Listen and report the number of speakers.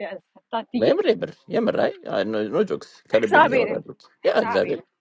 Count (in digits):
2